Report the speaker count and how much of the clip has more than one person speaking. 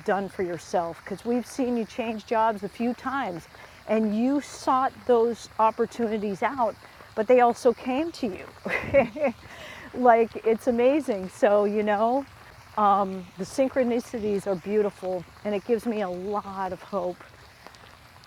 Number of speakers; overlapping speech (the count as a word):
one, no overlap